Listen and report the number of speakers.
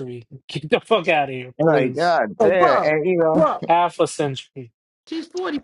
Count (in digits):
3